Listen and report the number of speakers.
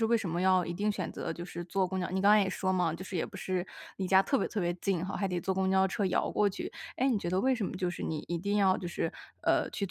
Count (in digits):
1